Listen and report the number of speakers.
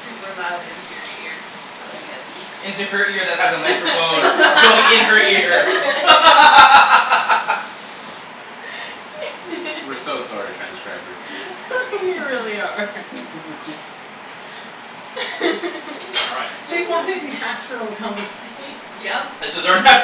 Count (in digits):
4